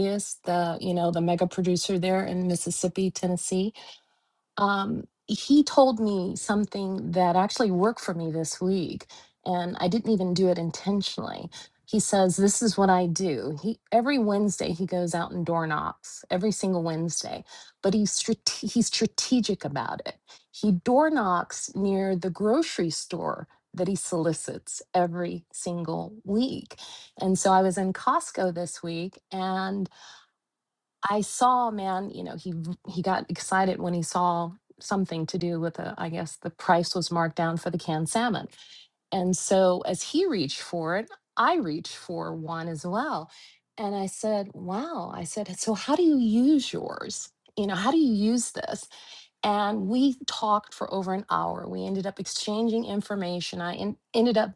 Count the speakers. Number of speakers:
1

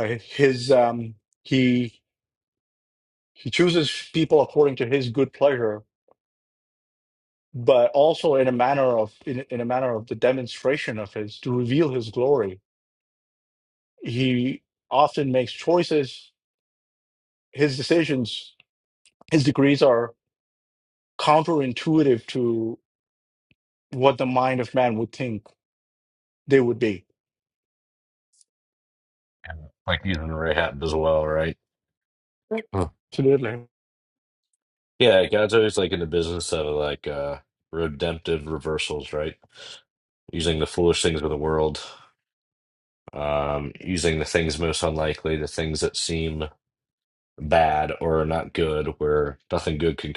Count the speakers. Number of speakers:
2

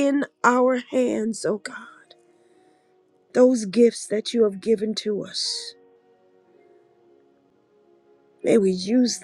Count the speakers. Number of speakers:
1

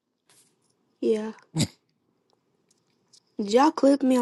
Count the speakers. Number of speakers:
1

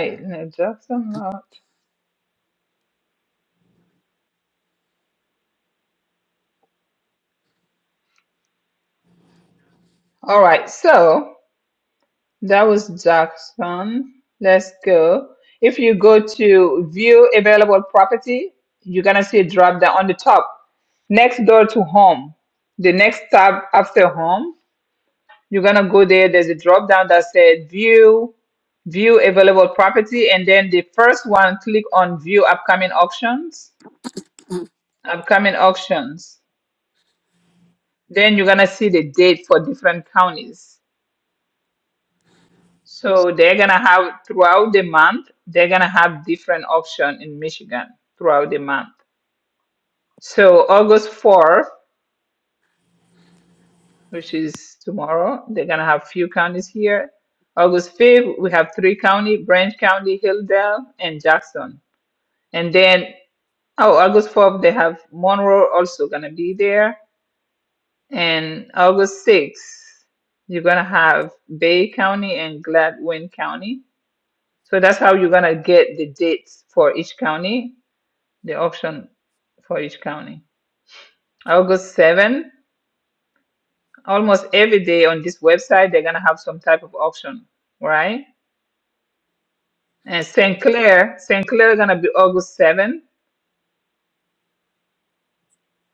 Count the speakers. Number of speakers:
1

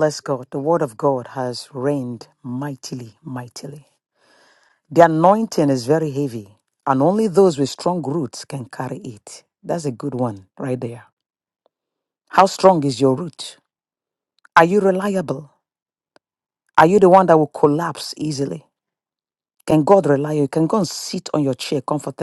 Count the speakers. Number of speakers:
1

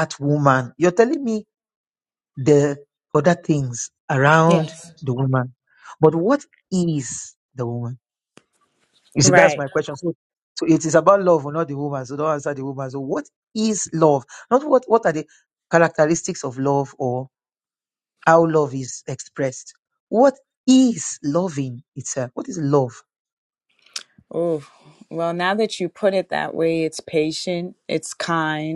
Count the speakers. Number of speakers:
2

